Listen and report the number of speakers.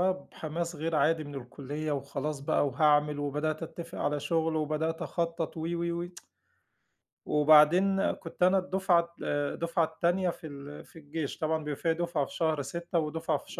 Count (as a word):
one